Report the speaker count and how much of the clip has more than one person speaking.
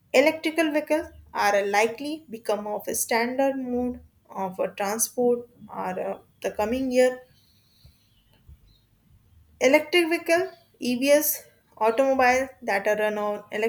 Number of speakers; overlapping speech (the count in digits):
1, no overlap